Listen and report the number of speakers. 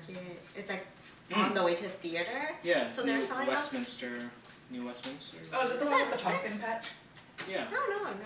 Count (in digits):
3